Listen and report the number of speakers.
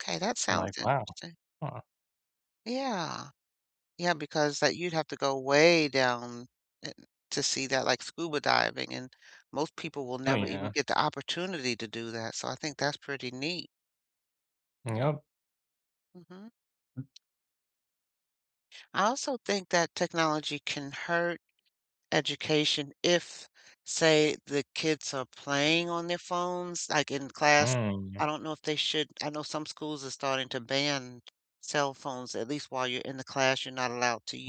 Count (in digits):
2